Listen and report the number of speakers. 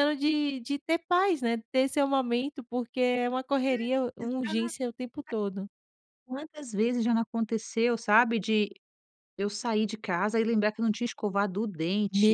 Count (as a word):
two